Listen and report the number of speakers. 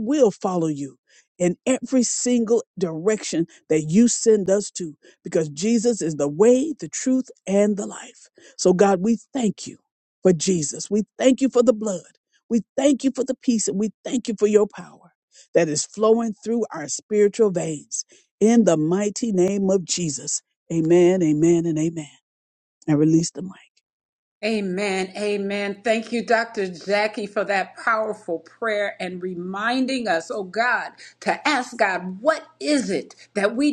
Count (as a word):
two